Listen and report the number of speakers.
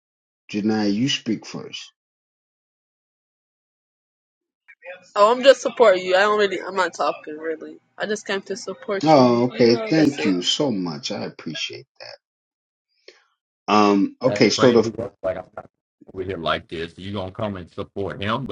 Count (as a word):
three